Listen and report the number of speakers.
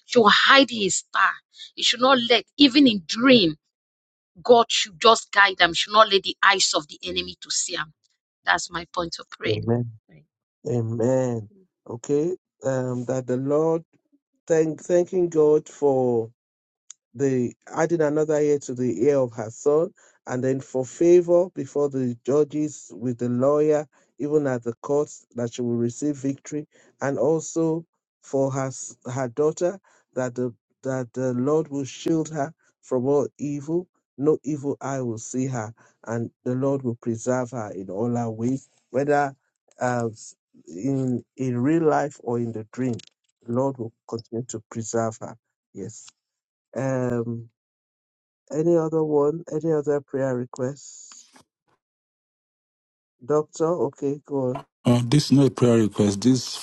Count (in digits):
3